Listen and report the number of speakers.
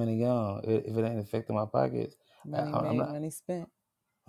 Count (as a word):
two